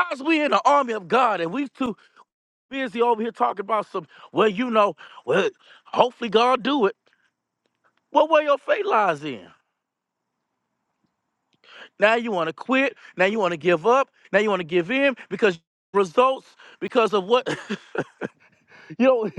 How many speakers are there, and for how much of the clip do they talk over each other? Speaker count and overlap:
1, no overlap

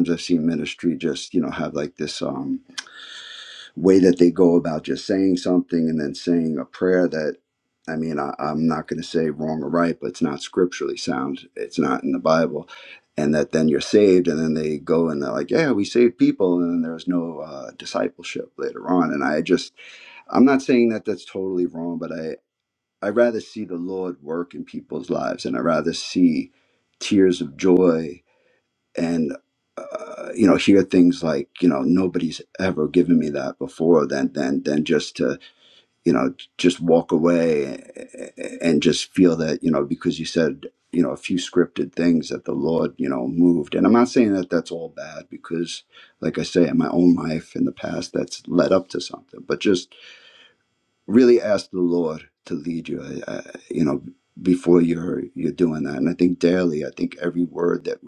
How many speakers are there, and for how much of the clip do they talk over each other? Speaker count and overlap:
1, no overlap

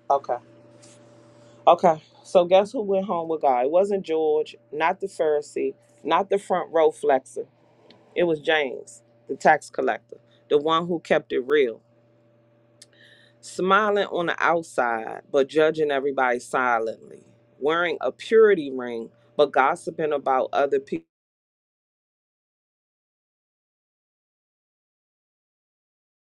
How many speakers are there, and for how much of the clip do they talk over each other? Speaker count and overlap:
1, no overlap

